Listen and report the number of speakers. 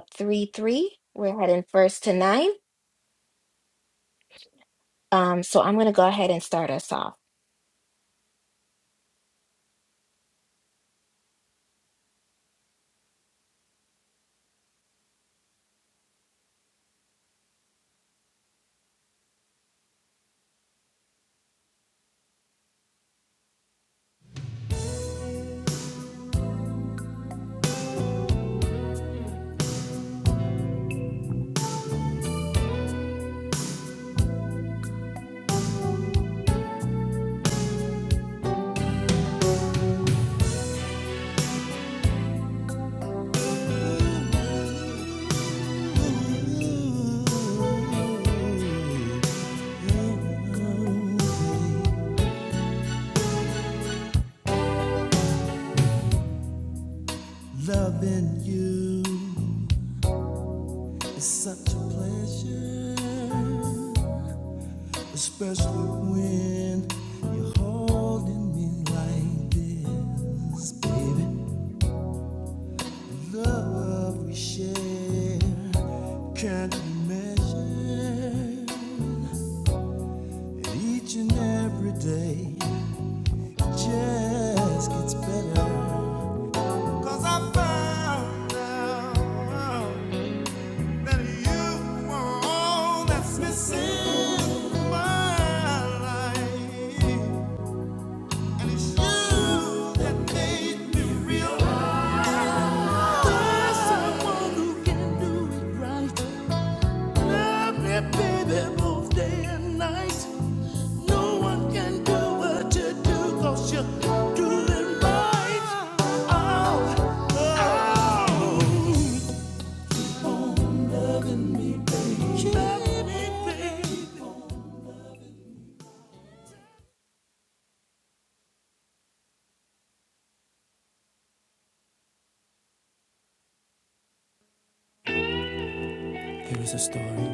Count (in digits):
3